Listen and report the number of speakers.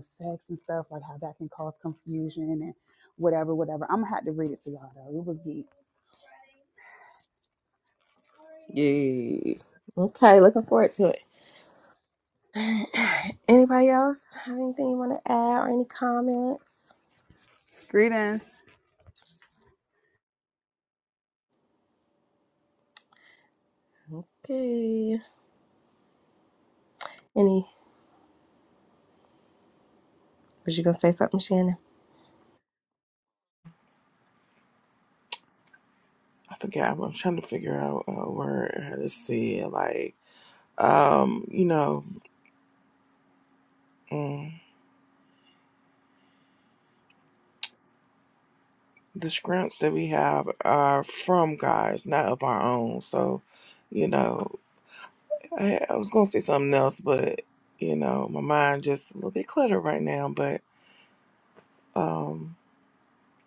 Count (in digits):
3